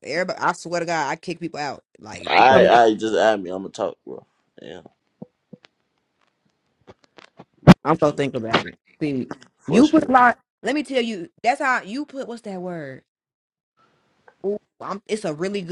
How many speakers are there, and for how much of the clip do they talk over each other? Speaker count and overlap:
2, about 6%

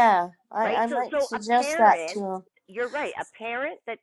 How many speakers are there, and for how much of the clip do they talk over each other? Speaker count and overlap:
2, about 39%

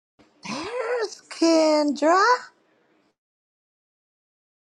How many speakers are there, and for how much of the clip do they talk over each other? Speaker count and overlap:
1, no overlap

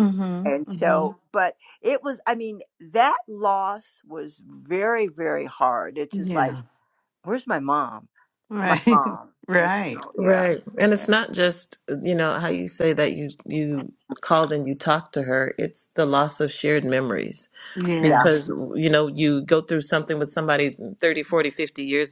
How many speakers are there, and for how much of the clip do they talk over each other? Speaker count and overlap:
3, about 13%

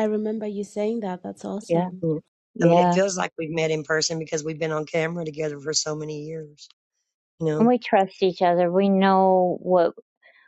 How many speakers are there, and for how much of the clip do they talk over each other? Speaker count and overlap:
3, about 7%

